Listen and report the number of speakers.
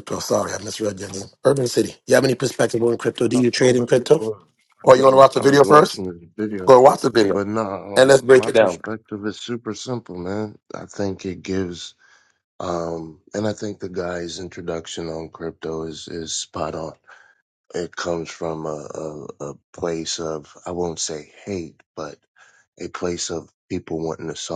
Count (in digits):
2